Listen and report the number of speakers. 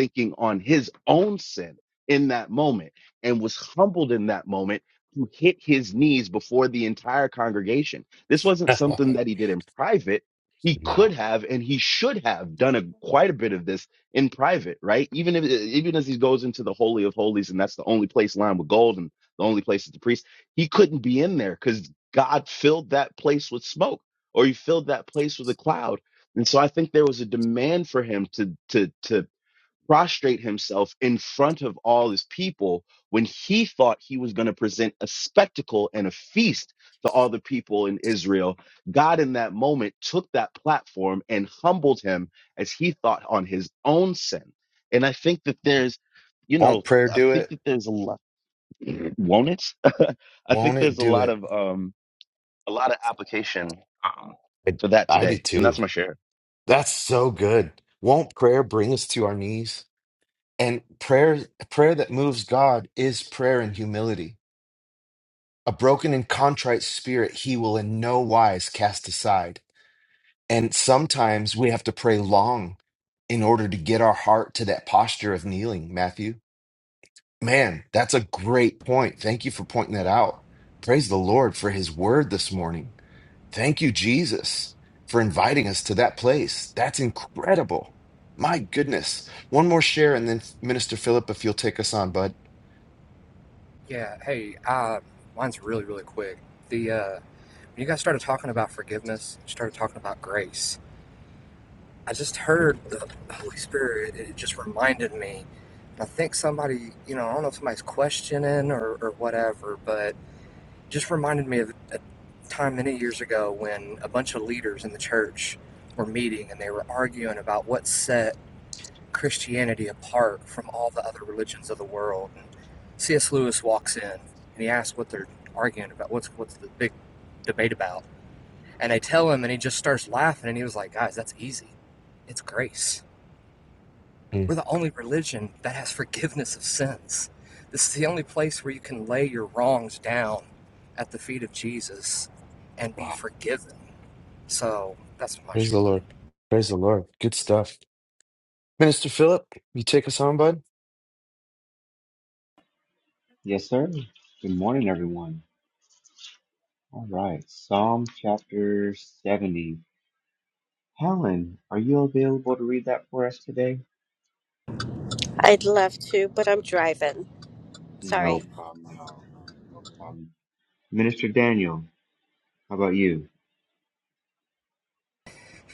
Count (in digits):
5